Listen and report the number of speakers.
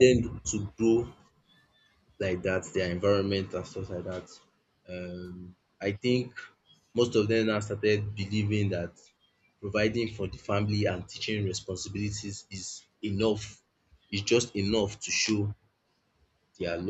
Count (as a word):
one